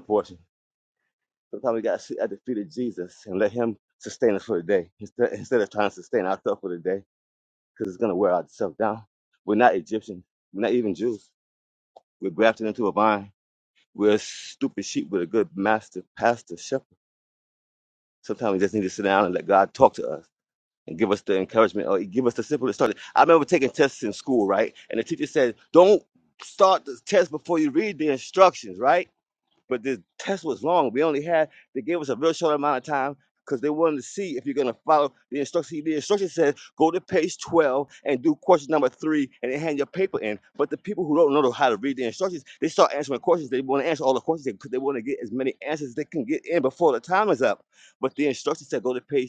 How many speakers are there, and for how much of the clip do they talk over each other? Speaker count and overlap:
1, no overlap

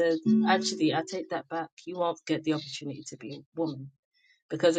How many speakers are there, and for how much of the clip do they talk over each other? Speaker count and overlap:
1, no overlap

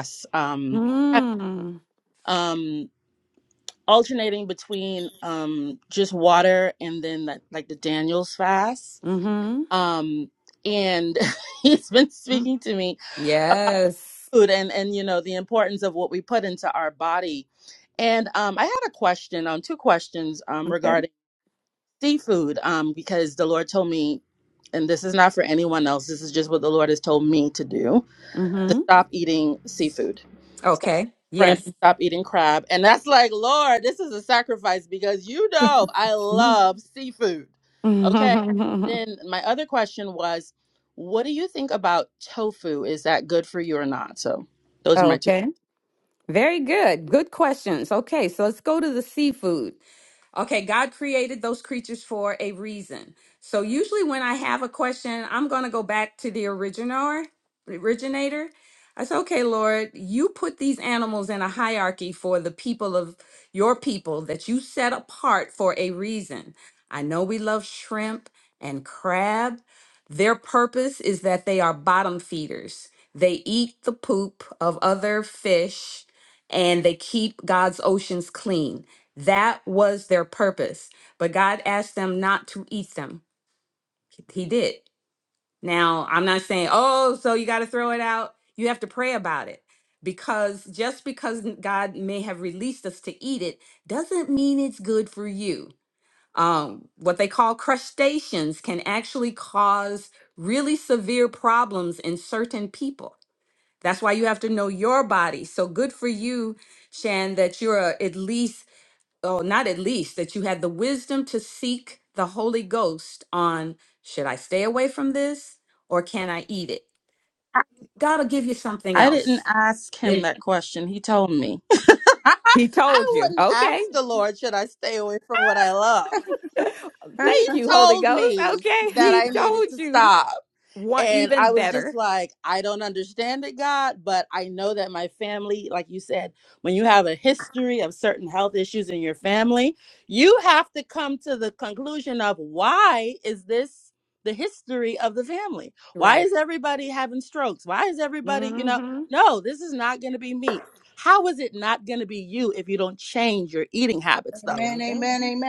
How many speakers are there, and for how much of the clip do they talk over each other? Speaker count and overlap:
3, about 5%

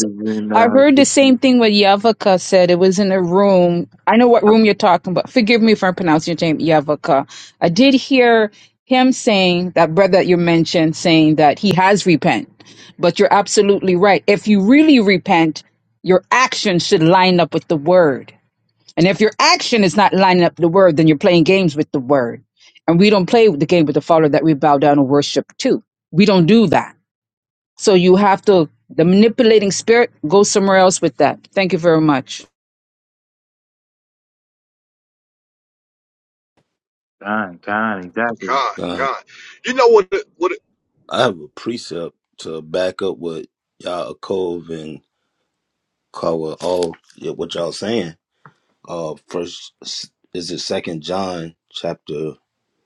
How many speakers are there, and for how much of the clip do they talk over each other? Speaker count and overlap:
4, about 3%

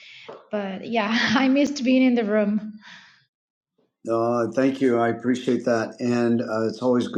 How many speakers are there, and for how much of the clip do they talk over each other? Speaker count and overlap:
2, no overlap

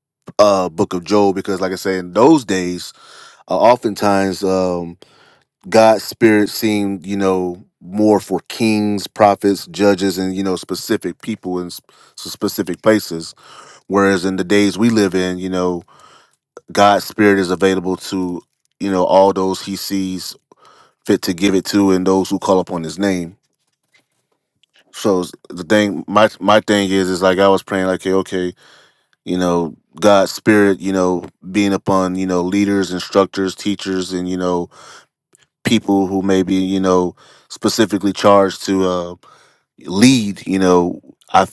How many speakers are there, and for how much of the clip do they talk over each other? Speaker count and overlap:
1, no overlap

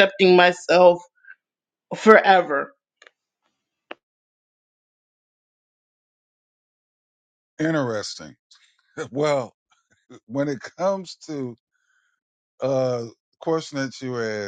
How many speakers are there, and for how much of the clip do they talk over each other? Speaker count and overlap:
2, no overlap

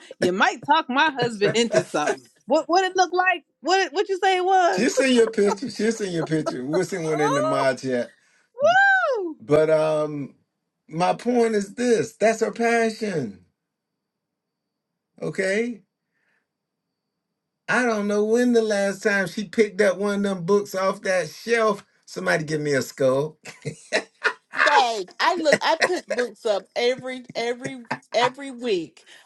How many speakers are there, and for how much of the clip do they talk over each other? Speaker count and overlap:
3, about 2%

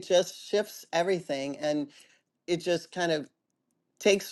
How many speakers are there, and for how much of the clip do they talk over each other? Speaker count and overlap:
1, no overlap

